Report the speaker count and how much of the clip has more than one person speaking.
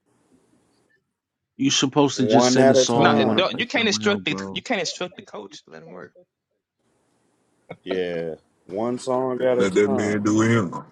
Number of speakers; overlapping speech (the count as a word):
four, about 28%